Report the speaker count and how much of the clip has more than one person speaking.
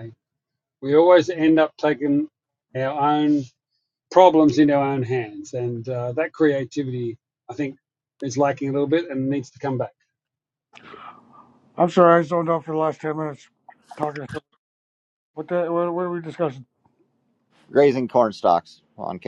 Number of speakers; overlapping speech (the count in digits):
3, no overlap